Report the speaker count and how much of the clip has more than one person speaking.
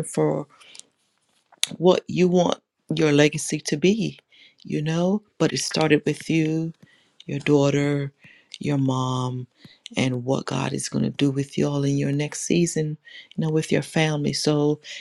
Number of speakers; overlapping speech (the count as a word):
one, no overlap